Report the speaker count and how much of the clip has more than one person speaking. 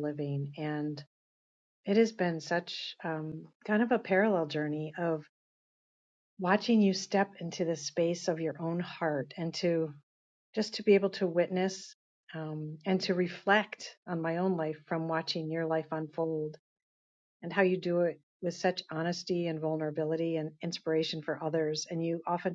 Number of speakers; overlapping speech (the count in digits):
1, no overlap